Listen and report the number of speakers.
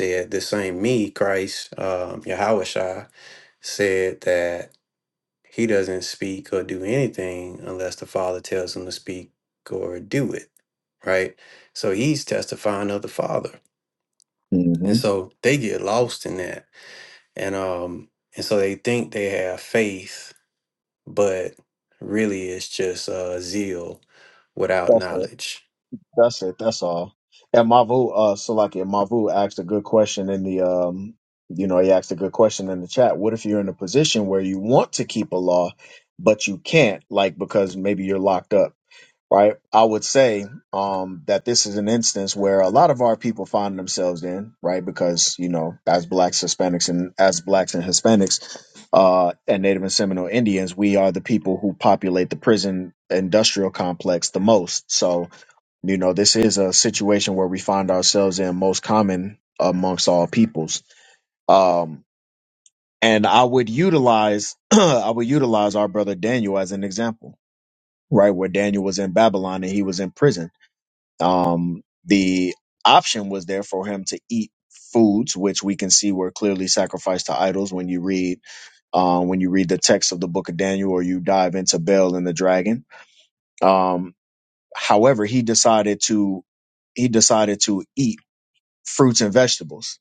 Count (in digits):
2